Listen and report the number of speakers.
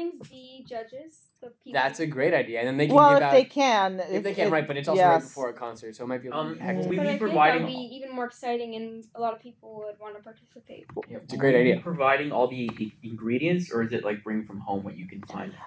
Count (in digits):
4